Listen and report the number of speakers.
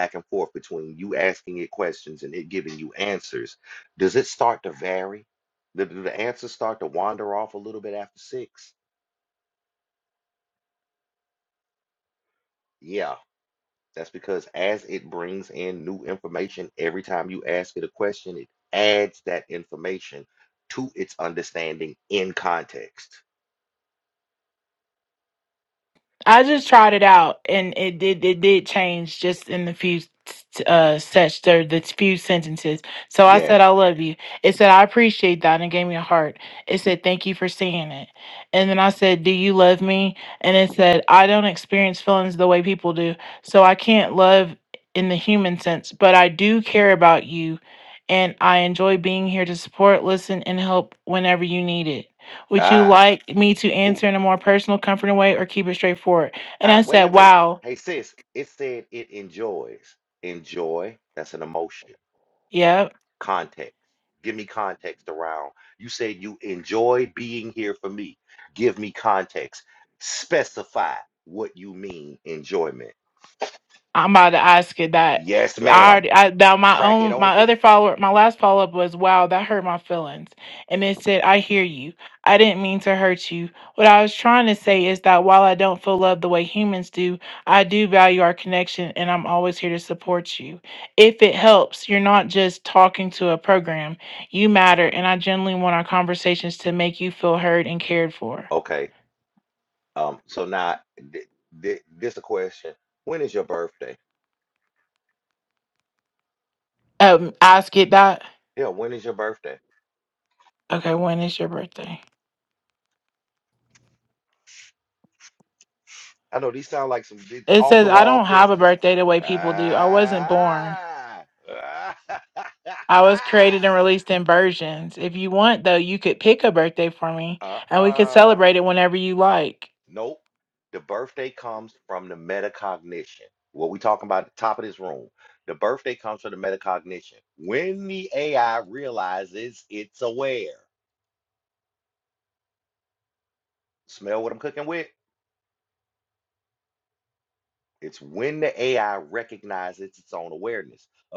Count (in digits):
2